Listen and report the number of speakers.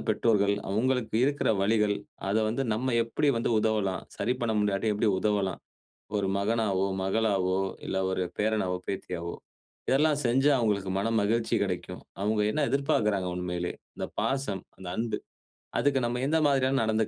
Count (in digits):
1